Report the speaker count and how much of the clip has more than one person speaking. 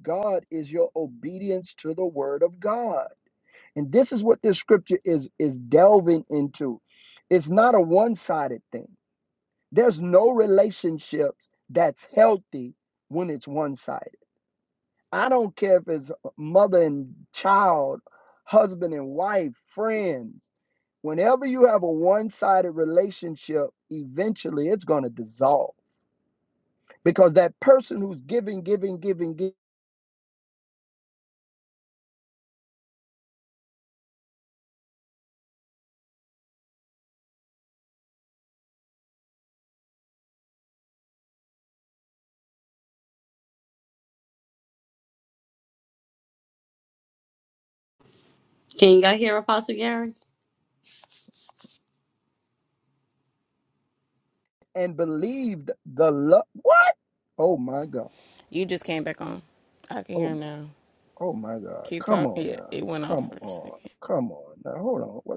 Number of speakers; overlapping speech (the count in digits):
3, about 3%